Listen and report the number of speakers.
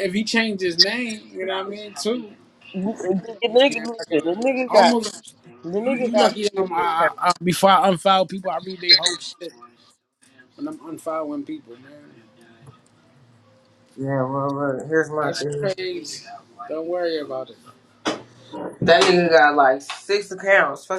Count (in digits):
2